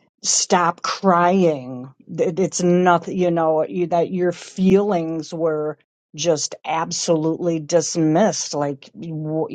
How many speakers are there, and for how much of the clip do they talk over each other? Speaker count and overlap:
1, no overlap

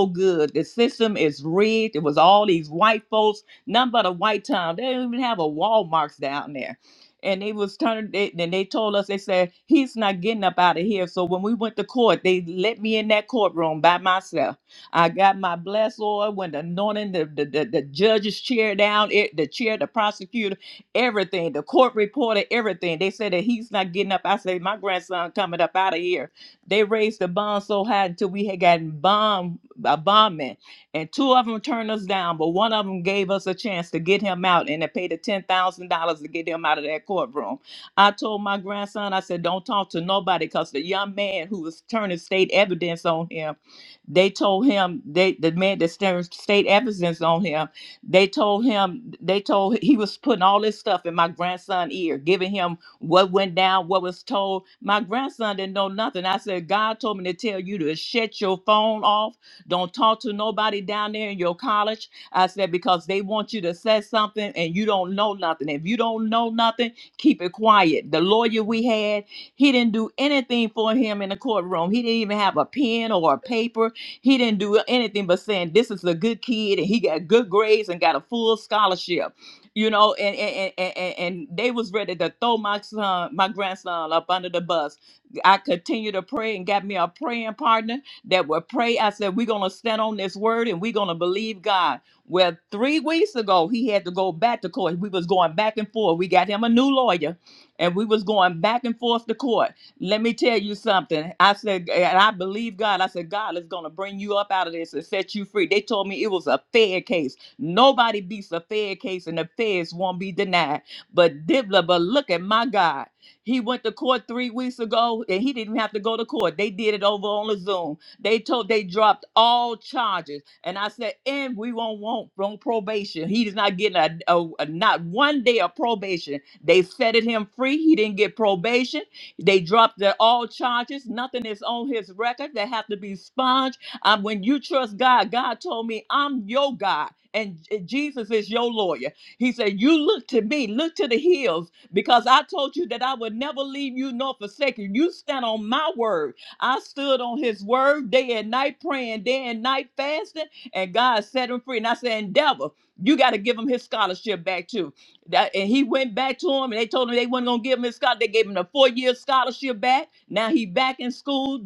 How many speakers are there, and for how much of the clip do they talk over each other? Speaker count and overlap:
1, no overlap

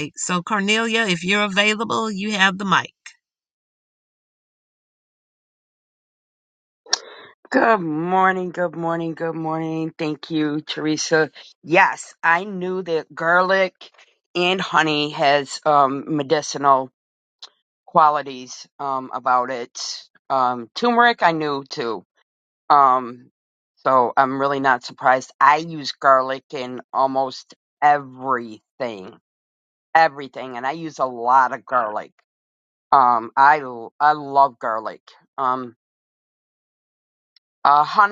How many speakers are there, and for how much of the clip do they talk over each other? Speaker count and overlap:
2, no overlap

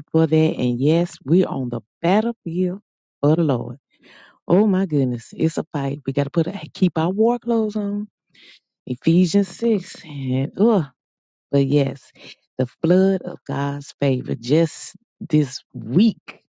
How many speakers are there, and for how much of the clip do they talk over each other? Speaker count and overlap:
1, no overlap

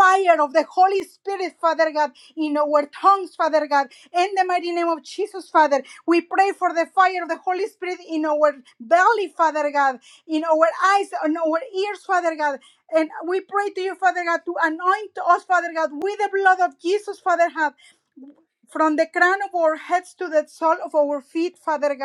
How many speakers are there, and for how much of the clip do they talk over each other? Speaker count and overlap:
1, no overlap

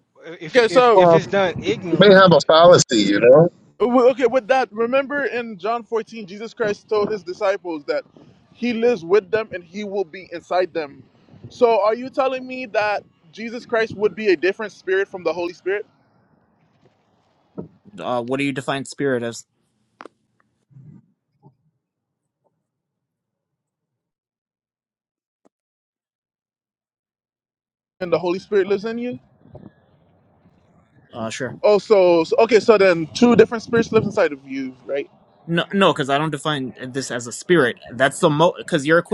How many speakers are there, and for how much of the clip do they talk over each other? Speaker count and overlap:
4, about 3%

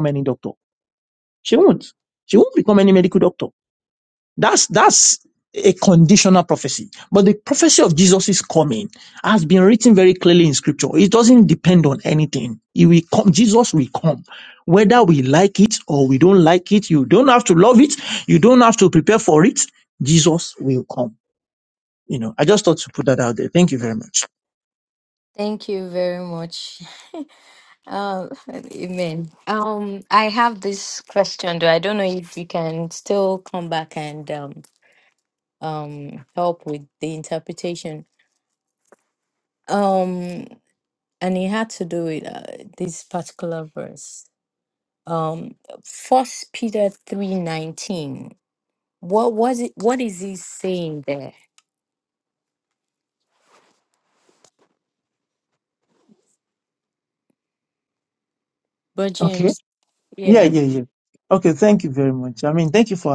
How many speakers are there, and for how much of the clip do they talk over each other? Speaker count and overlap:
2, about 1%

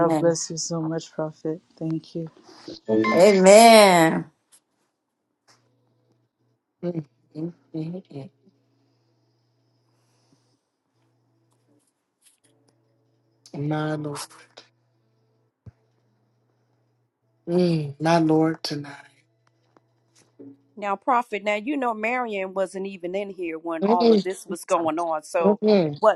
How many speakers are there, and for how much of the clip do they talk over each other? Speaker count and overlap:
4, about 3%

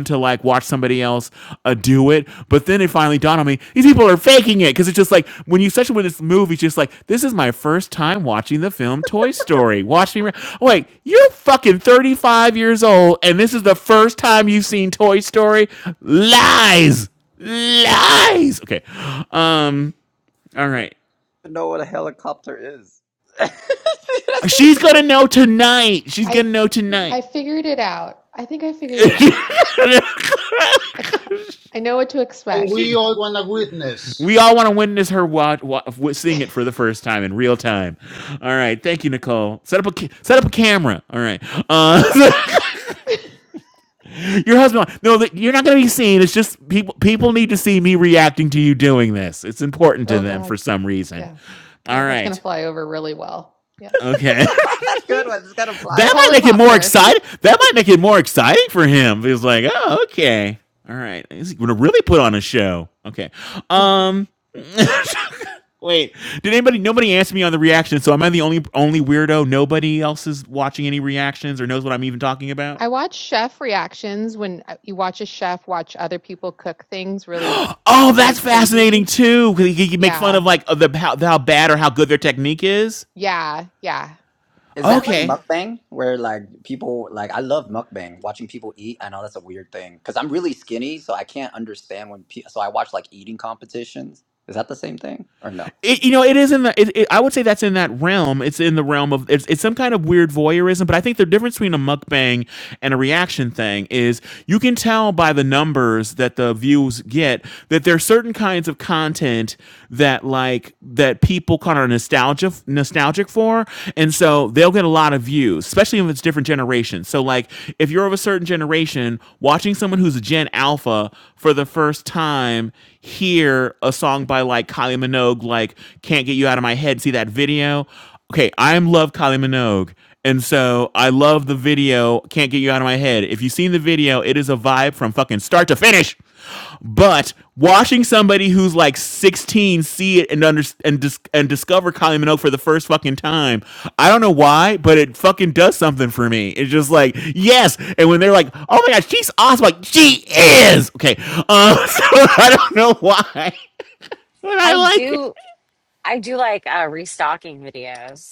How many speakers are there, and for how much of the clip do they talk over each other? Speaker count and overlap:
5, about 4%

